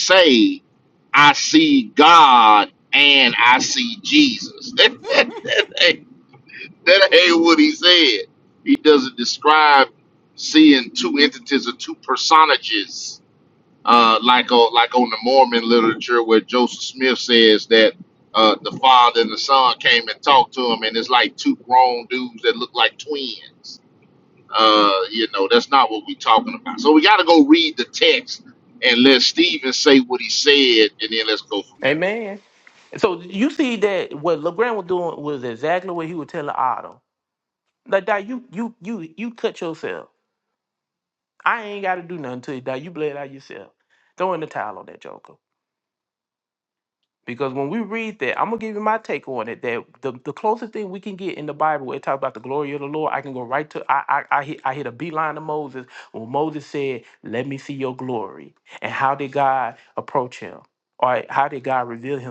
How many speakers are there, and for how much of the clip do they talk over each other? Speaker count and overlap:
two, under 1%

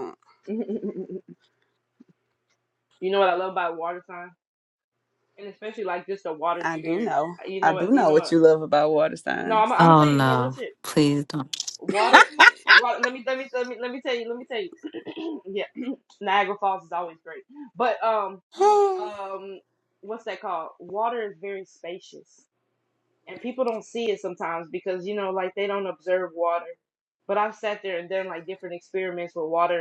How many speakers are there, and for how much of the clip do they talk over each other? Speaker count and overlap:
three, about 10%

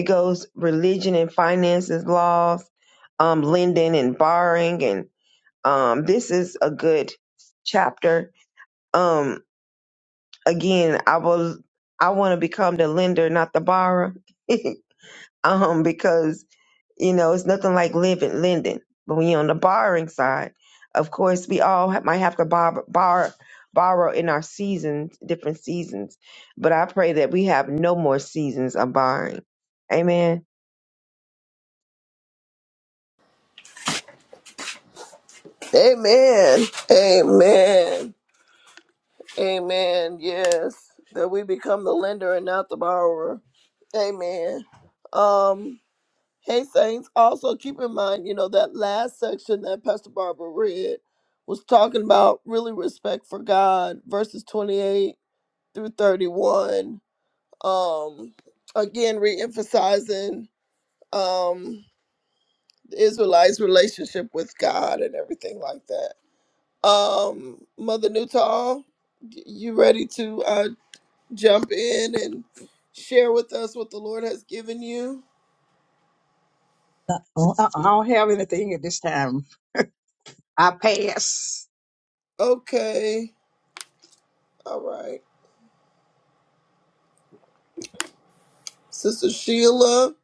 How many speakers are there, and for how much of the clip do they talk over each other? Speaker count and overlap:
three, no overlap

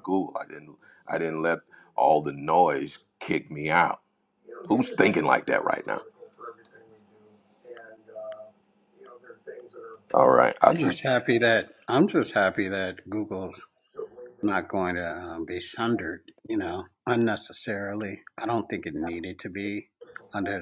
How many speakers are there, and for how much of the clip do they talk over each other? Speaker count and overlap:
two, about 2%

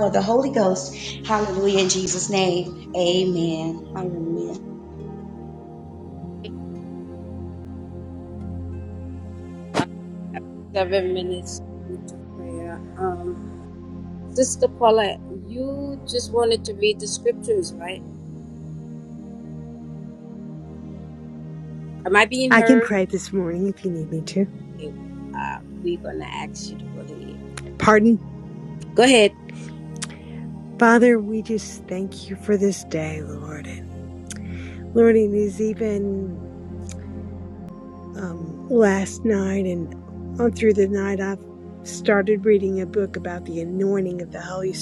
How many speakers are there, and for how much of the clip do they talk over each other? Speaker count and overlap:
three, about 1%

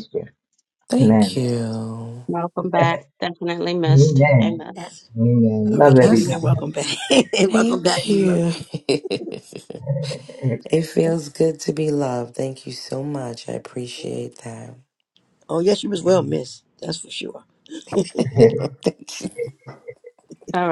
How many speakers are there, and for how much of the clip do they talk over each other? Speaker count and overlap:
four, about 15%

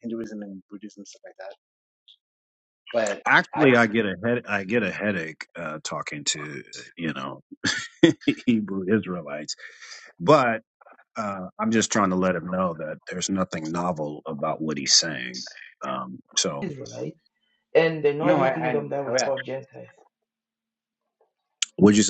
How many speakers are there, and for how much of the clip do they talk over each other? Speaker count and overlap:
three, about 6%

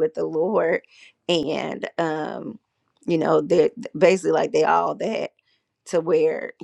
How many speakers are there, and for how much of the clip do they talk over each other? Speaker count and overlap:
one, no overlap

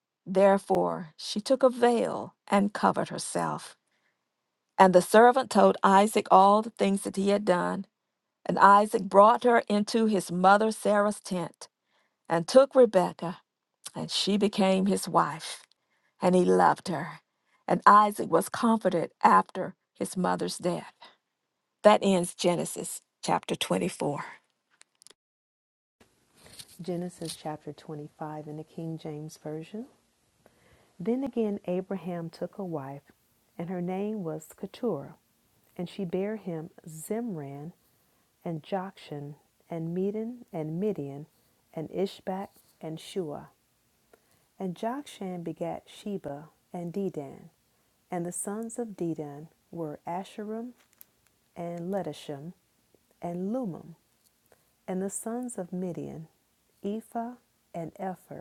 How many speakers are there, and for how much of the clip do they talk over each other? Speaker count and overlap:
two, no overlap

